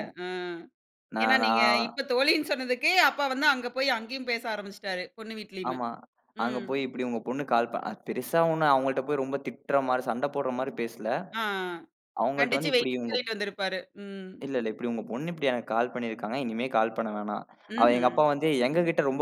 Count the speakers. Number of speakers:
2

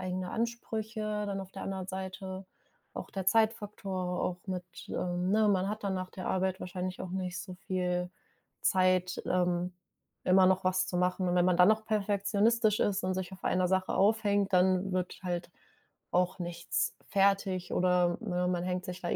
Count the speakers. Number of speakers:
1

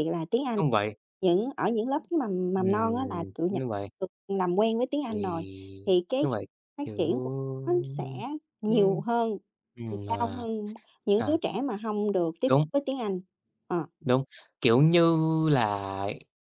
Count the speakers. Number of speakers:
2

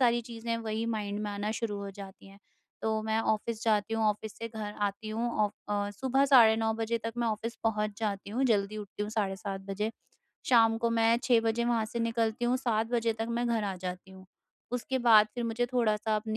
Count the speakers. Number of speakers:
1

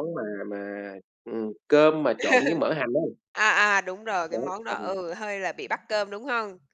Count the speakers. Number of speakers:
2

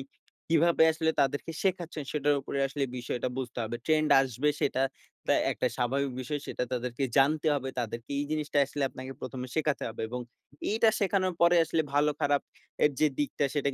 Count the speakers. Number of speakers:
1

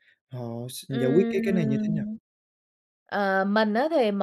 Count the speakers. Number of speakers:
2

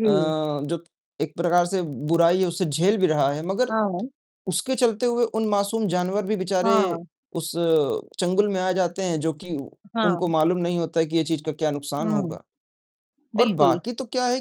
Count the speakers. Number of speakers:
2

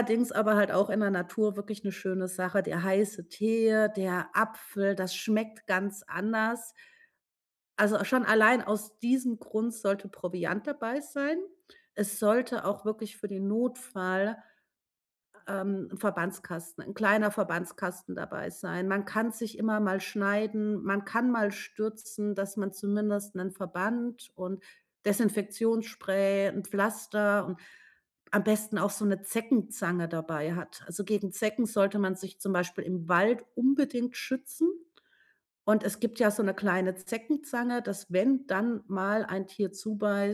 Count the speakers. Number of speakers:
1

